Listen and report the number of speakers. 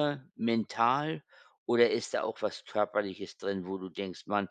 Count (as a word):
one